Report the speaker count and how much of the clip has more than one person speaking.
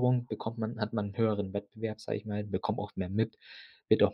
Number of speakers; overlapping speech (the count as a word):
one, no overlap